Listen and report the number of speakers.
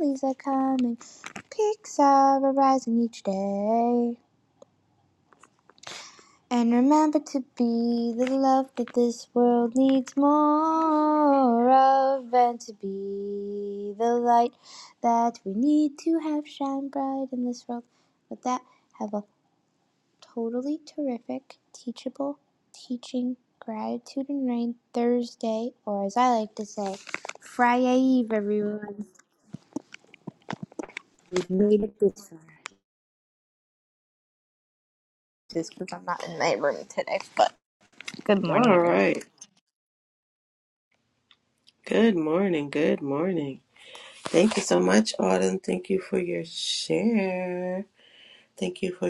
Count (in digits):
2